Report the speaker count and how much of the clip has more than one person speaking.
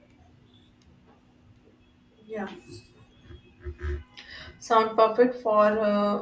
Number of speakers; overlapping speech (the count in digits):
1, no overlap